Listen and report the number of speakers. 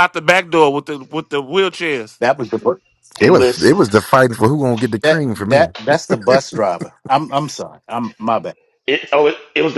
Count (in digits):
4